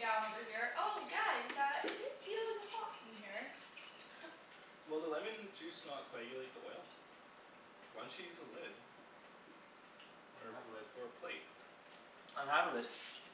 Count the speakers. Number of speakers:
three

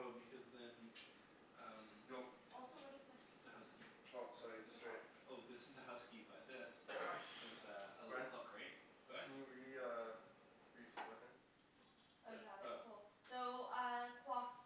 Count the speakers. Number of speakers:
three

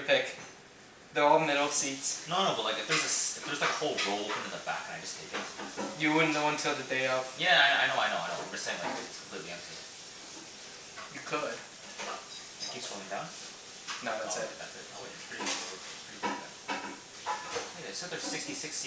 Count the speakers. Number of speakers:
two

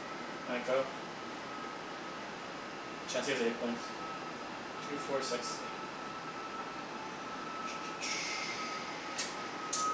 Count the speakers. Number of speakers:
one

